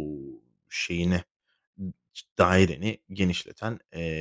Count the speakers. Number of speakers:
1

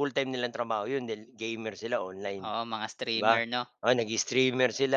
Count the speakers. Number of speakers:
2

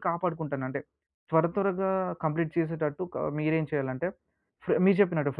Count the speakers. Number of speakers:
1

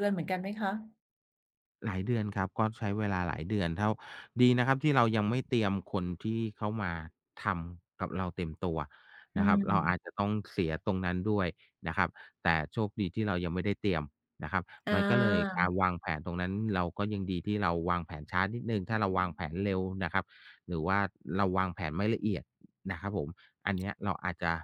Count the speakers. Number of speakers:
2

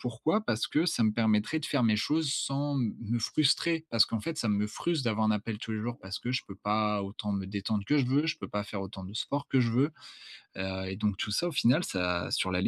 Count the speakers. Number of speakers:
1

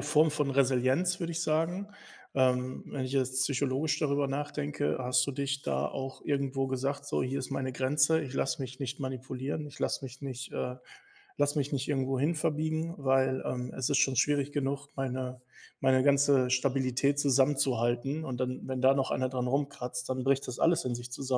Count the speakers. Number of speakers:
1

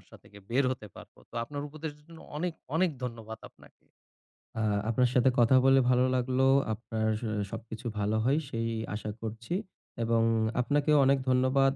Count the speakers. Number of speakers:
2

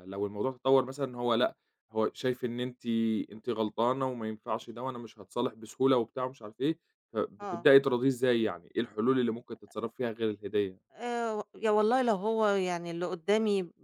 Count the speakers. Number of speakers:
2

